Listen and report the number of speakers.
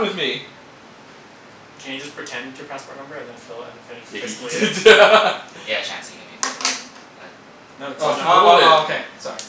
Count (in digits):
4